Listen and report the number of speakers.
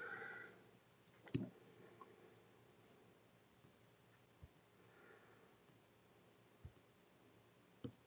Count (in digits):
0